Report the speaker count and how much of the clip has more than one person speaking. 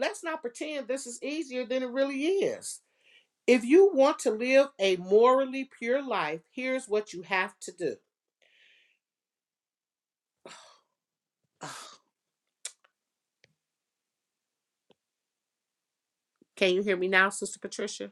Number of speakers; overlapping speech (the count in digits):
1, no overlap